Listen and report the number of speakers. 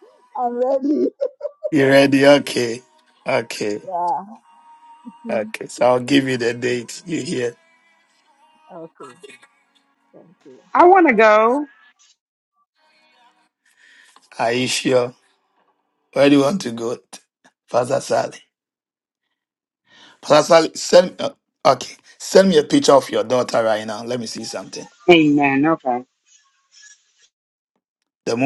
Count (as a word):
three